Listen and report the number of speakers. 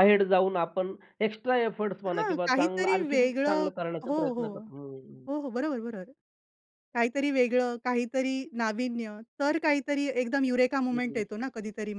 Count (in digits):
2